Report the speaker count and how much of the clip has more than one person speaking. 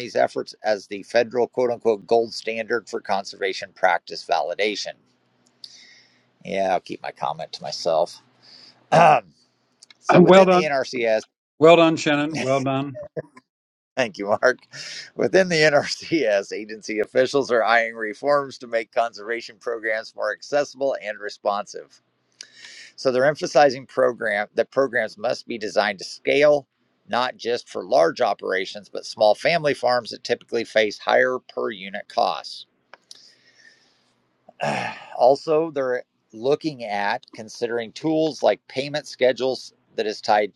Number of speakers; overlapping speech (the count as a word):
two, about 1%